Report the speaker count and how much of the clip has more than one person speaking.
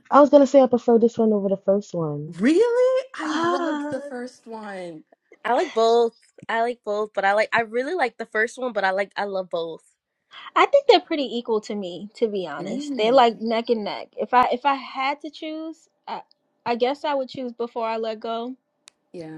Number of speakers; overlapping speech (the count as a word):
four, about 7%